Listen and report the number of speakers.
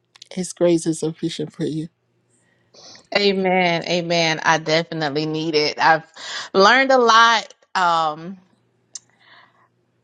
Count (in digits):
2